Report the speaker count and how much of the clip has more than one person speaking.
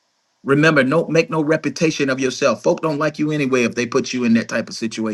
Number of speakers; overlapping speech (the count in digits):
1, no overlap